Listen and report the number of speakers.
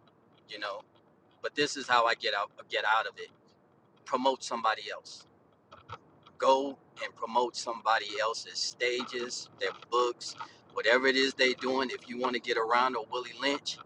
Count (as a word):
one